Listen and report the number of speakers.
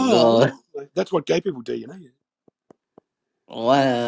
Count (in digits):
2